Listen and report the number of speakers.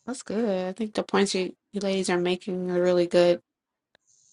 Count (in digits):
1